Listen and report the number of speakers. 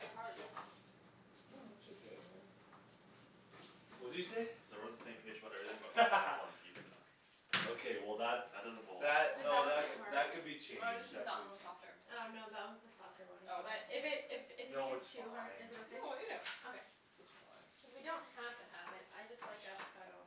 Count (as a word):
four